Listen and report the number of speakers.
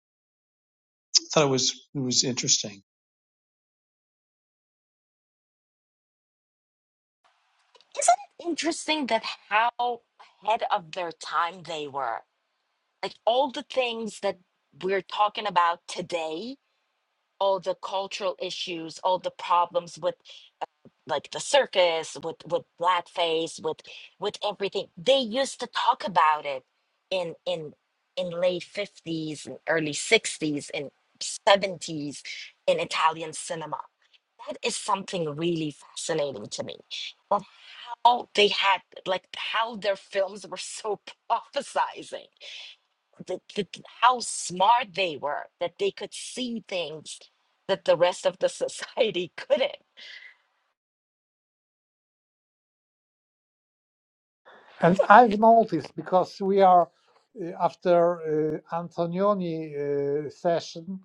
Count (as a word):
three